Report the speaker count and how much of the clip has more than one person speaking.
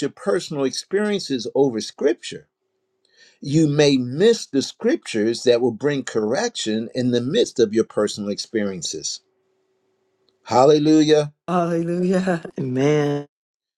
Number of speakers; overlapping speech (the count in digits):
2, no overlap